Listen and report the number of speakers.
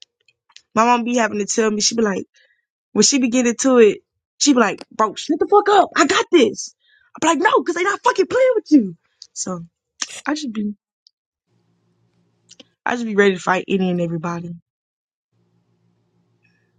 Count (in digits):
1